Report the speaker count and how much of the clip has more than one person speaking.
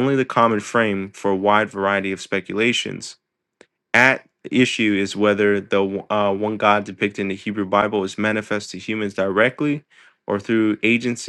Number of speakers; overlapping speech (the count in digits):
1, no overlap